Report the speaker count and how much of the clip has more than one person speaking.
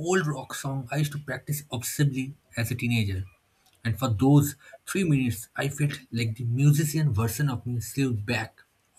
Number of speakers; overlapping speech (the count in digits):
1, no overlap